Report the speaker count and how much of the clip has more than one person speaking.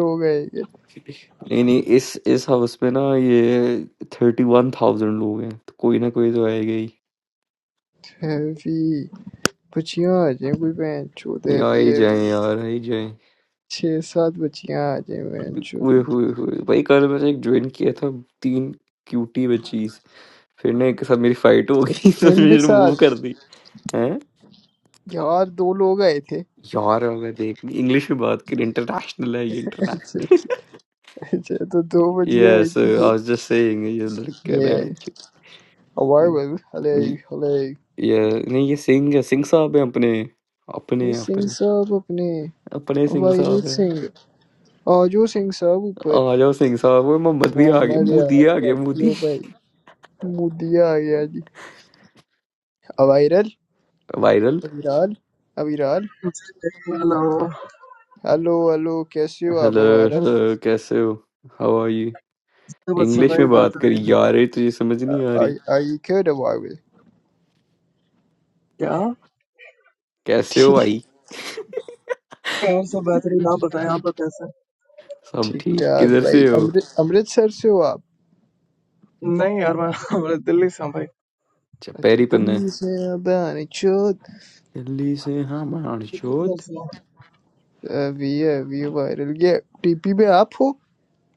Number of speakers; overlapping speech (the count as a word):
three, about 11%